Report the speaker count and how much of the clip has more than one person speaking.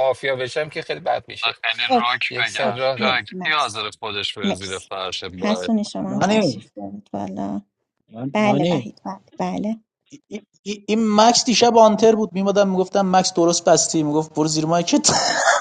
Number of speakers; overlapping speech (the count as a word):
four, about 21%